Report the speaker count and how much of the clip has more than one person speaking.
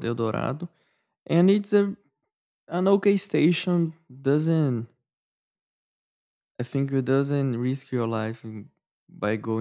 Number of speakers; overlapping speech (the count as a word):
one, no overlap